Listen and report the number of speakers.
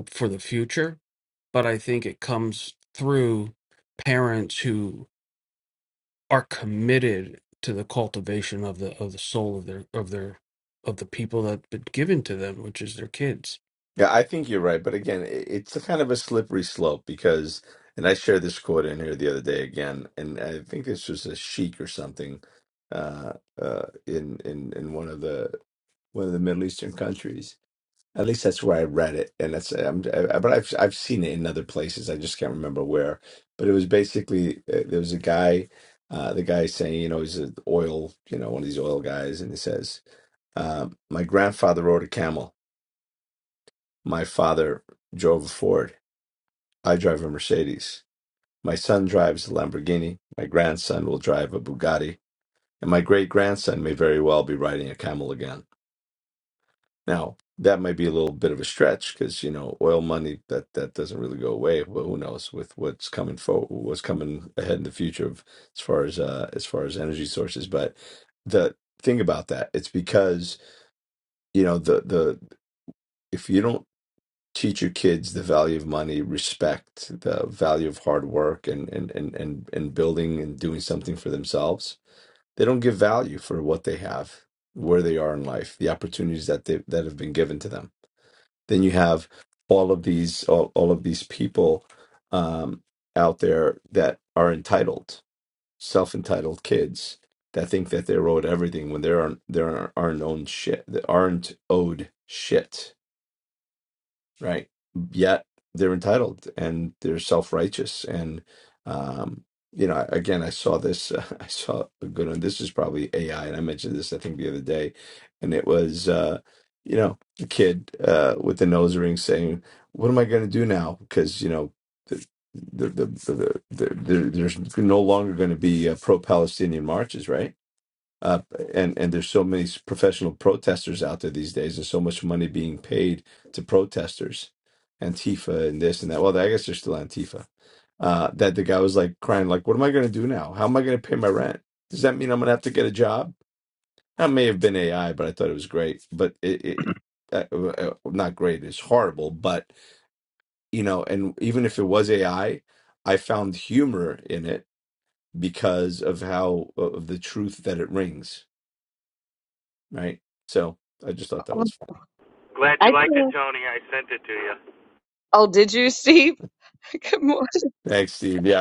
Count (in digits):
4